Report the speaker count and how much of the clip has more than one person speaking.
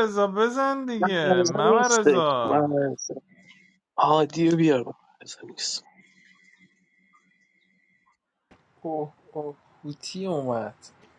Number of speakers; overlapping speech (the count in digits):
3, about 15%